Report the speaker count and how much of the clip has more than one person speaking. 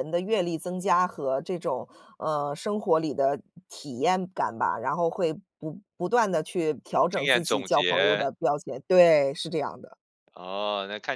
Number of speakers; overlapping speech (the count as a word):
two, about 10%